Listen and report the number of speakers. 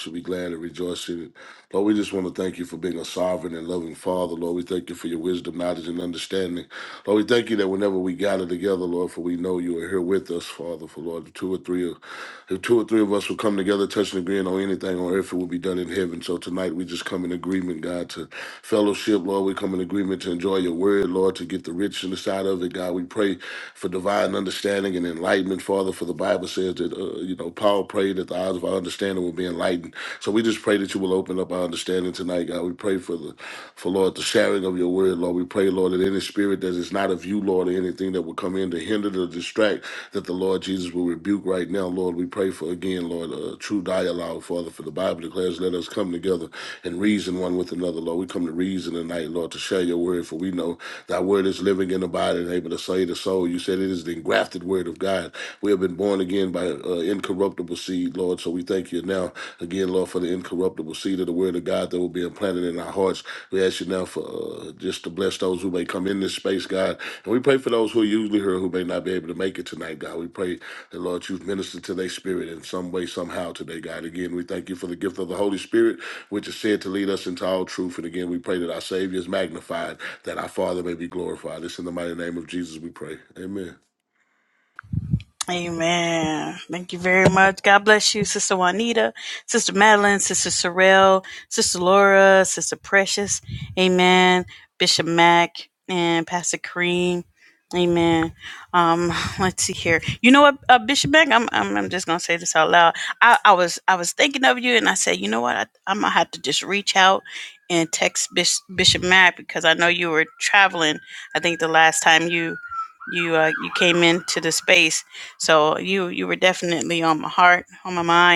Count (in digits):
2